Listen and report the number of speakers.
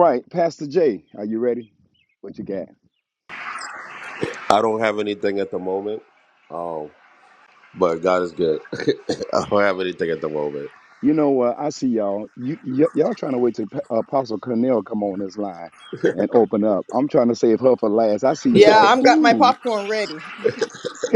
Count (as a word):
three